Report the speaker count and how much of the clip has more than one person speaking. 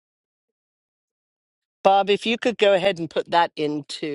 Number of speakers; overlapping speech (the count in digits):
1, no overlap